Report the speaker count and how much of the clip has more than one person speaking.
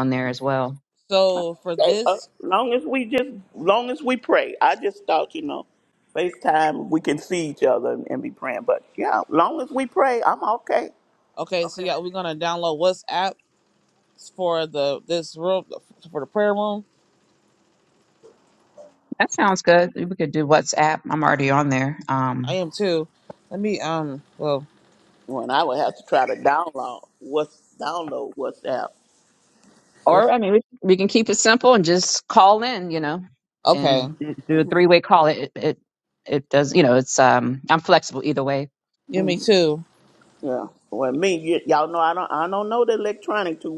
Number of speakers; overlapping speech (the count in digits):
3, about 2%